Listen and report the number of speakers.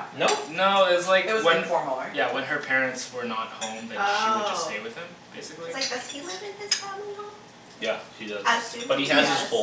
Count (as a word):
four